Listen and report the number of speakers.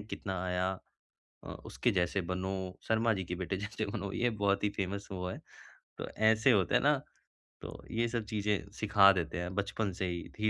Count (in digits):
1